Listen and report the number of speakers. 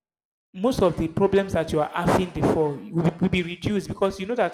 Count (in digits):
1